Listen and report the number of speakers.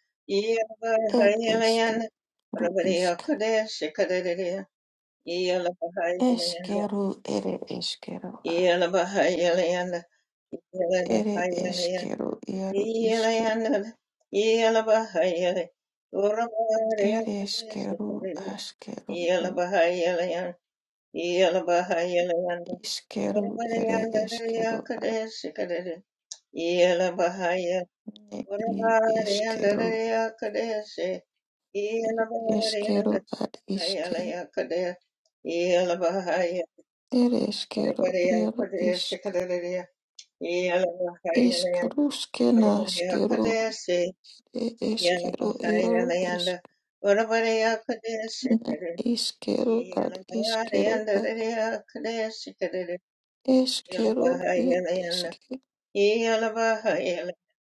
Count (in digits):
2